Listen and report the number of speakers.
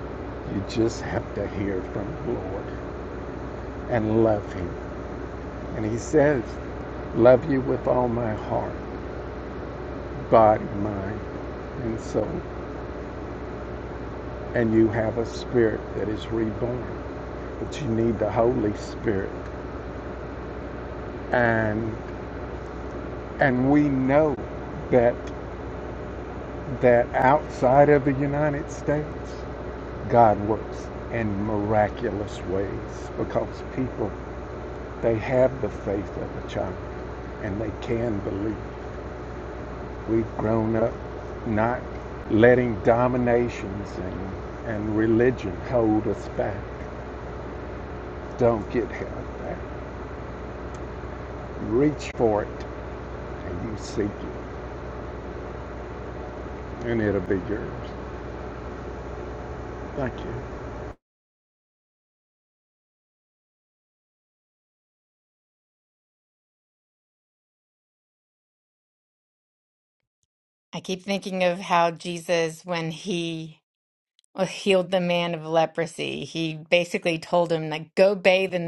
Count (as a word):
two